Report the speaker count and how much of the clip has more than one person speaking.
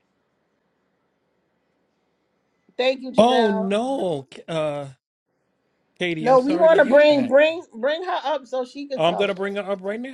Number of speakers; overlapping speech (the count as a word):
two, about 22%